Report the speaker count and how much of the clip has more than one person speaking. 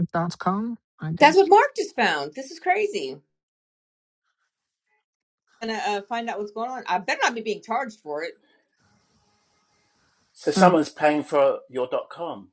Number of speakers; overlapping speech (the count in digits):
3, about 3%